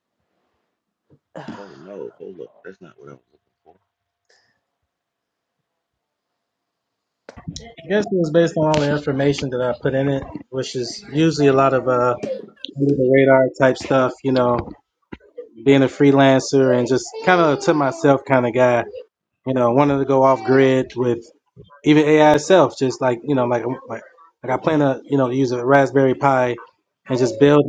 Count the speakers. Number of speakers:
two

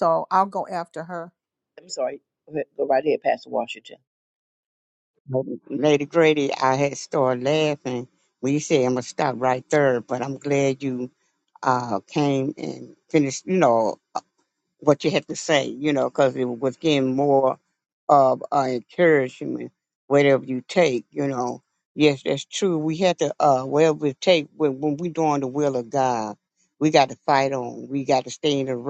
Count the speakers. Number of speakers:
three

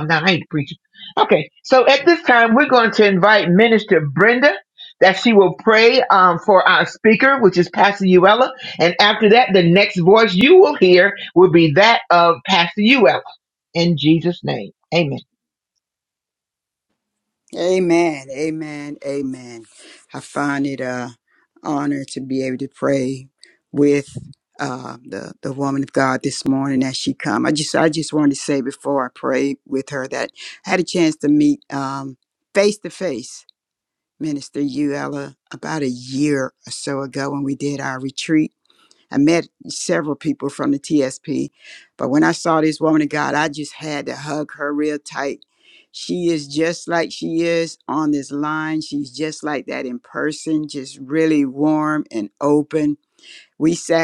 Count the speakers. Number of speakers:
two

